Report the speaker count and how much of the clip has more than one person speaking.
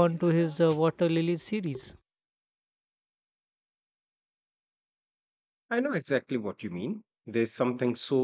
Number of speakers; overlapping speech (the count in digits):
2, no overlap